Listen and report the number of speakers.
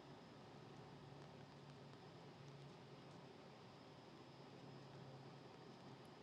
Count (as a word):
zero